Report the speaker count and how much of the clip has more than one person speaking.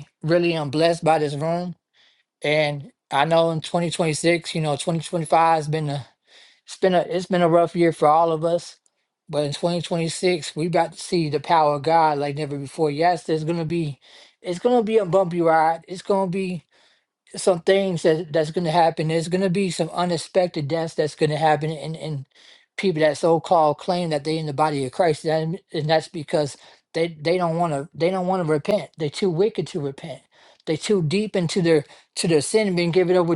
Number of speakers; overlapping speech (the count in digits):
1, no overlap